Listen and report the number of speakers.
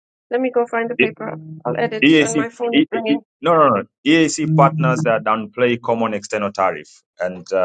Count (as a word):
two